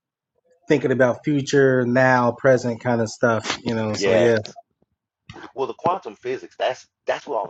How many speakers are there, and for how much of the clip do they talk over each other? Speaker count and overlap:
two, about 5%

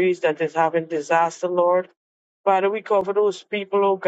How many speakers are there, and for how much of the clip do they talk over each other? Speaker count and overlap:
one, no overlap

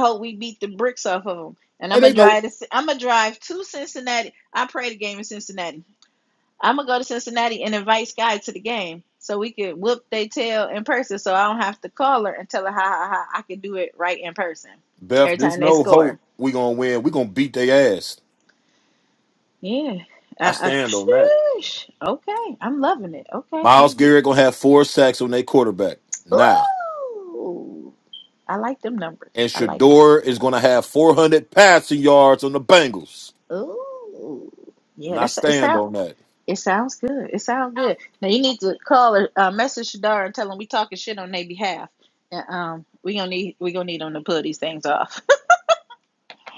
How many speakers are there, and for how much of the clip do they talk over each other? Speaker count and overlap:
two, about 9%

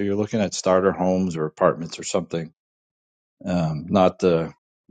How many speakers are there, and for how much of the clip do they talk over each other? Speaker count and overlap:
one, no overlap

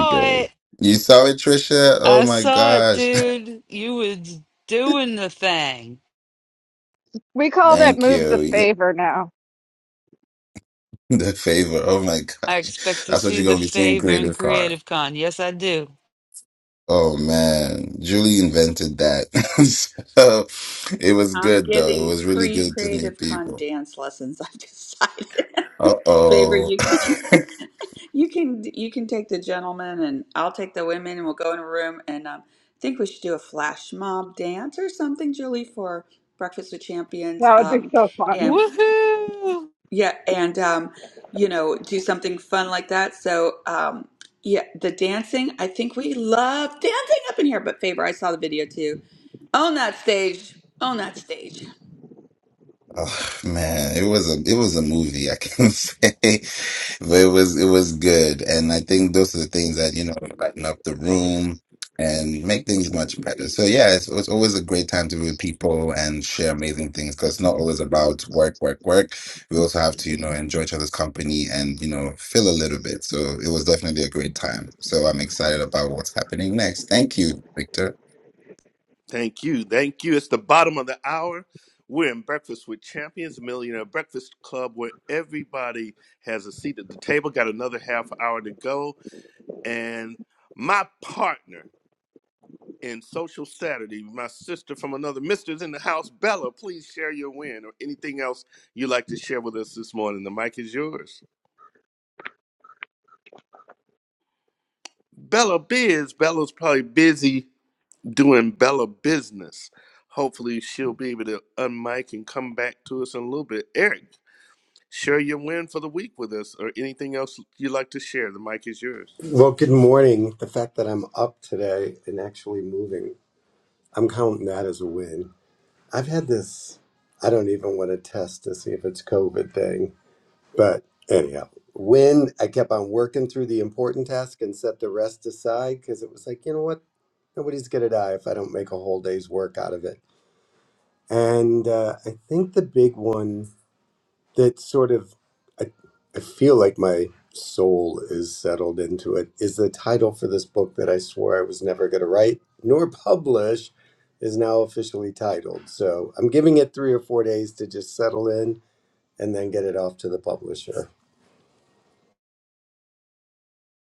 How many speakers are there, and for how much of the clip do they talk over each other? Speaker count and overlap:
six, about 5%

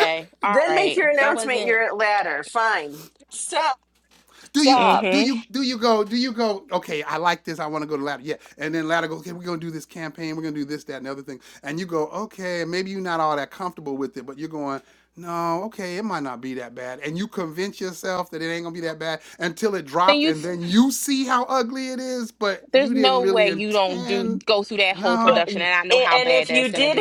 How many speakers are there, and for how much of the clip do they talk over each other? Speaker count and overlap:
three, about 22%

